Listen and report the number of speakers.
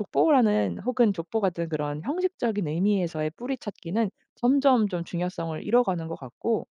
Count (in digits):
1